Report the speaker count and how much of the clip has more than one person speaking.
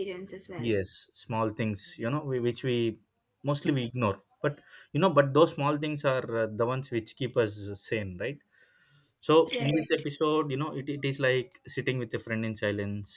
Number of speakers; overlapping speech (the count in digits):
2, about 5%